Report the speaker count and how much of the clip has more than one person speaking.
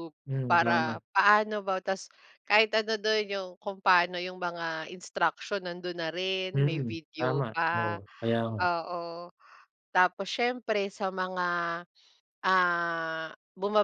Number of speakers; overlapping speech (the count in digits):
2, about 15%